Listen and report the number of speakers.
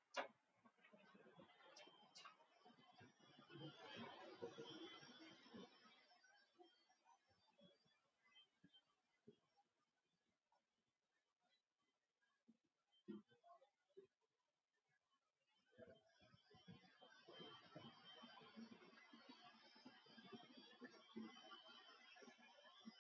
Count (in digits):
0